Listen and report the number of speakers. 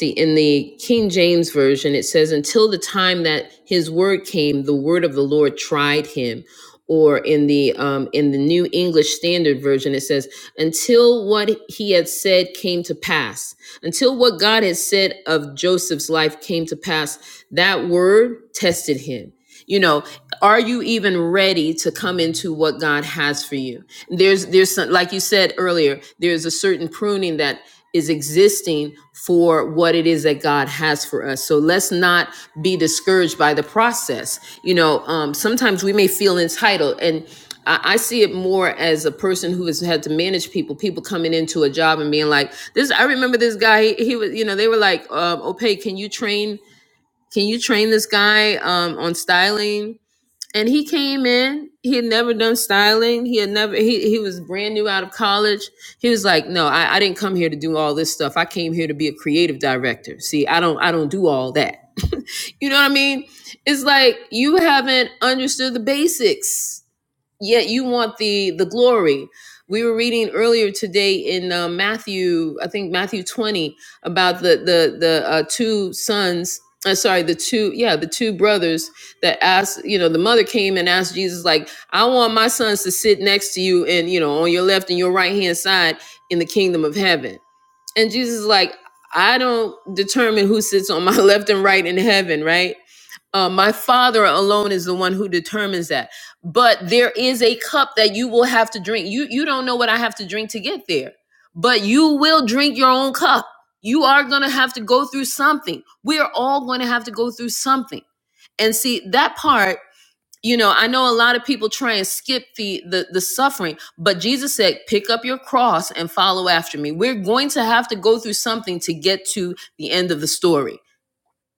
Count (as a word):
one